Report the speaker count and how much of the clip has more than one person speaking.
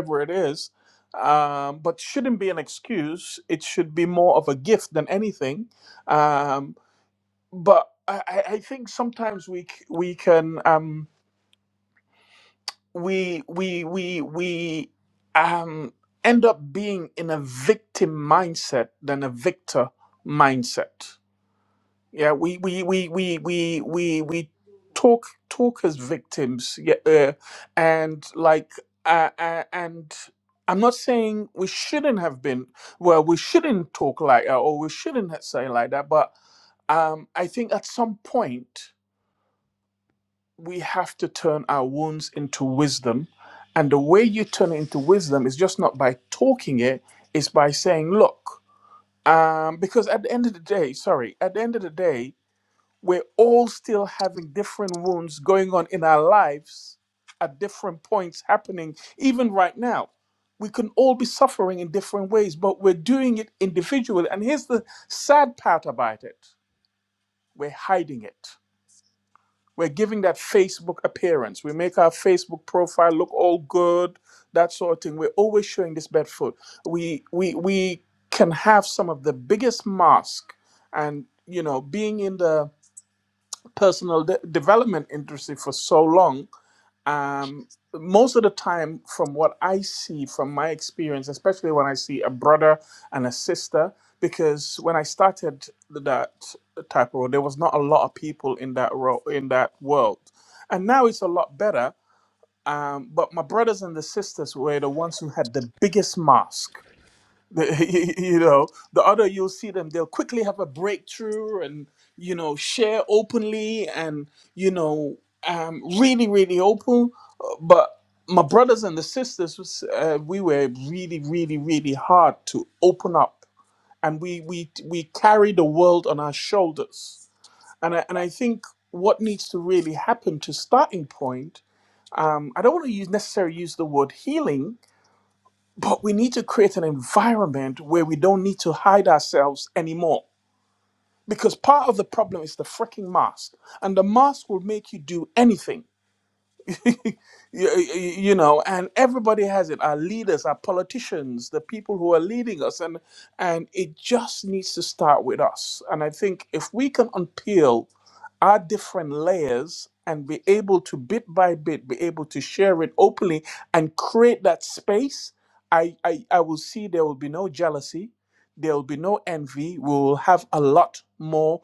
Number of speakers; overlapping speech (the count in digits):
1, no overlap